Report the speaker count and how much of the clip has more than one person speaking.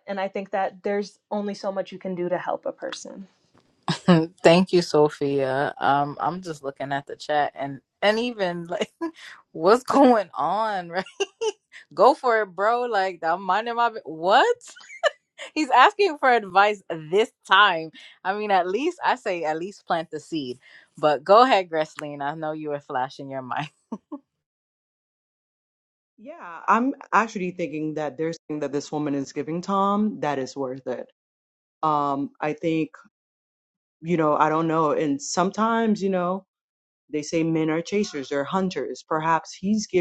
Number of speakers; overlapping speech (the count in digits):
3, no overlap